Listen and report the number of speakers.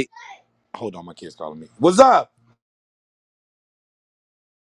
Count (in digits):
1